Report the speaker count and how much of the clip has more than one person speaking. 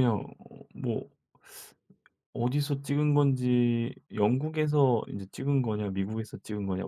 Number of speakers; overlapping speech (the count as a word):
one, no overlap